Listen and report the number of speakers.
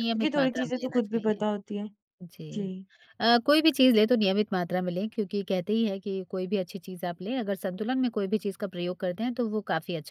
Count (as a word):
two